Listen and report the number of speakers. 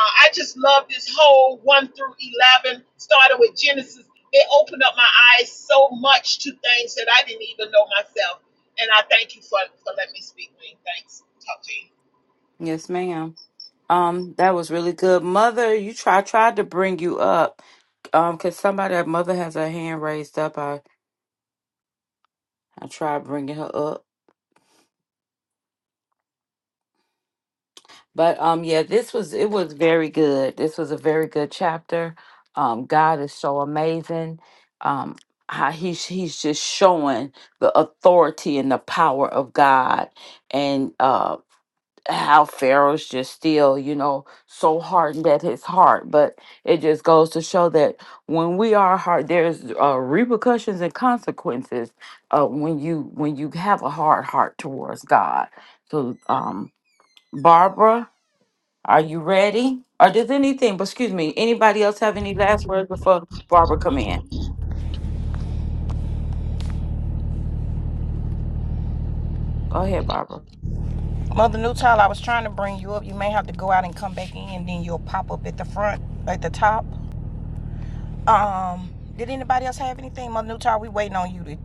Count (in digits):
3